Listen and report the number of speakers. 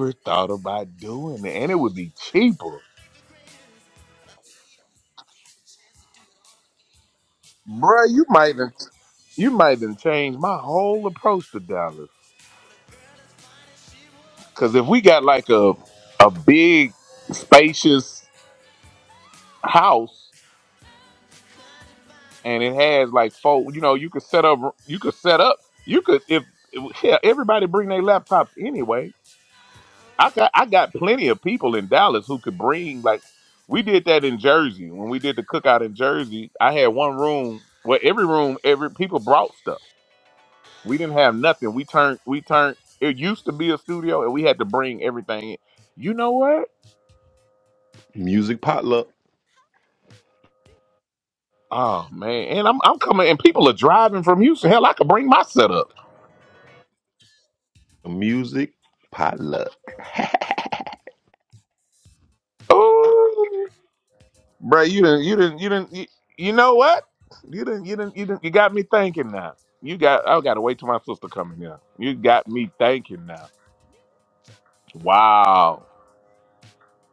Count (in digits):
2